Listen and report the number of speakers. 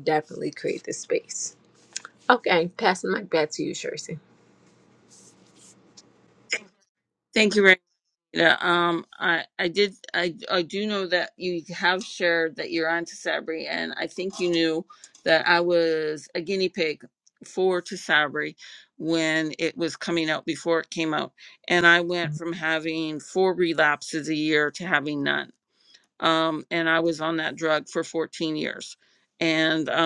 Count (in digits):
2